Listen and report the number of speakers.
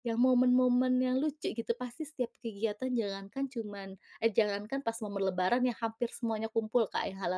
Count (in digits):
1